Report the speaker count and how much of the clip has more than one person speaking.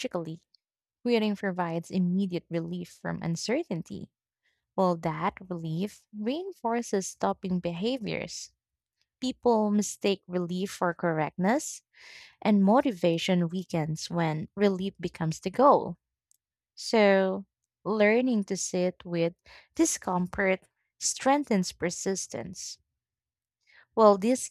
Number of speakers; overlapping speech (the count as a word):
one, no overlap